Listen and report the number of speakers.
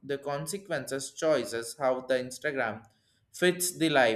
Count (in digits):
1